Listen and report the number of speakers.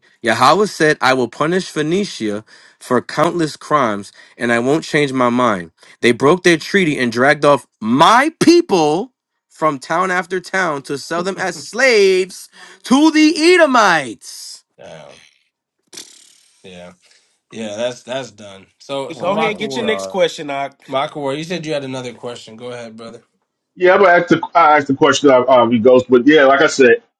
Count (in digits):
4